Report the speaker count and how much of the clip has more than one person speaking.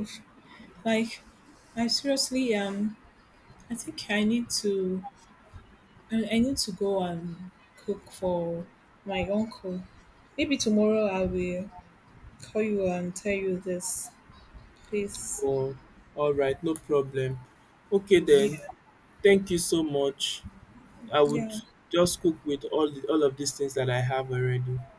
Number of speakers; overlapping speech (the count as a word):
two, about 2%